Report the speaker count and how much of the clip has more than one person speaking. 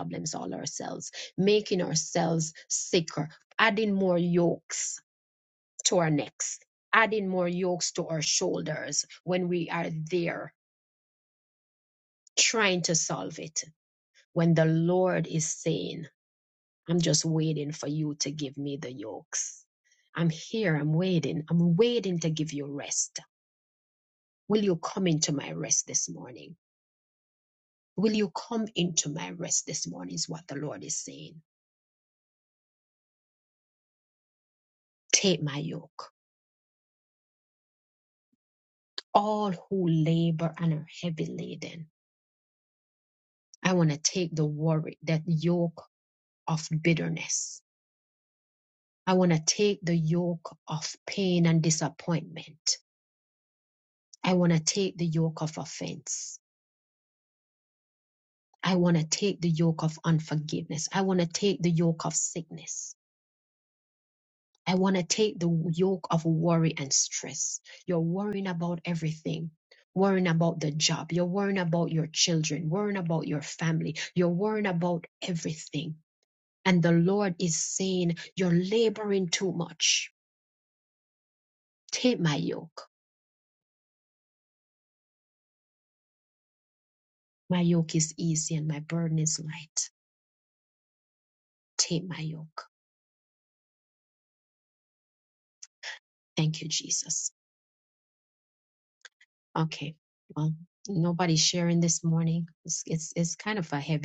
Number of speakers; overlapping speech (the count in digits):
1, no overlap